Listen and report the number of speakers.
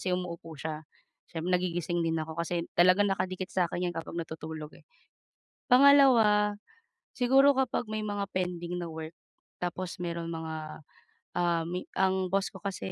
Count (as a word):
one